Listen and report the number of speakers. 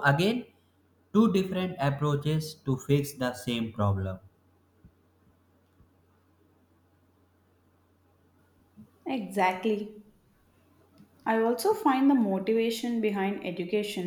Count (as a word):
two